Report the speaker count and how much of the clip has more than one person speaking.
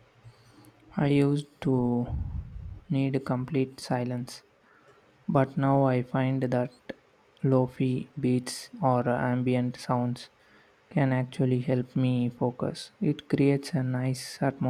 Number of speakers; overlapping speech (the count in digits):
1, no overlap